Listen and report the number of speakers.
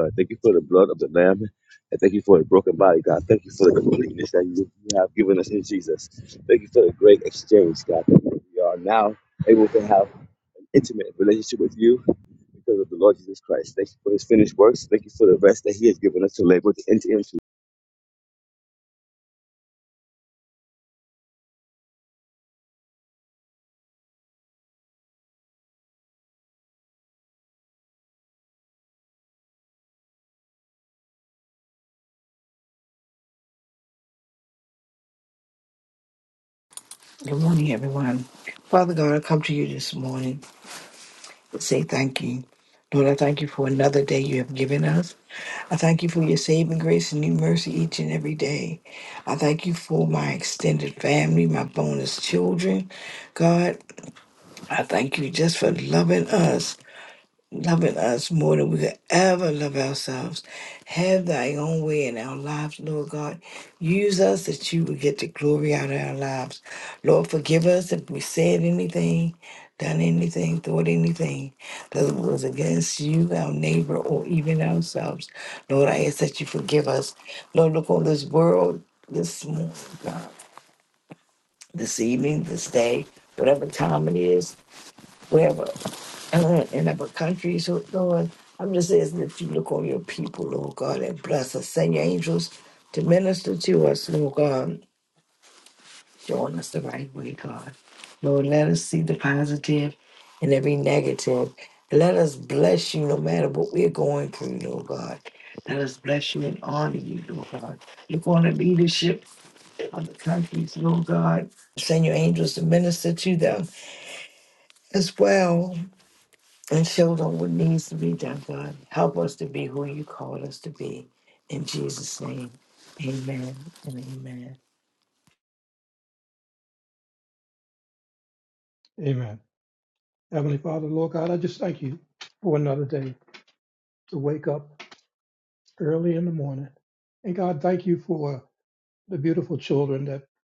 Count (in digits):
3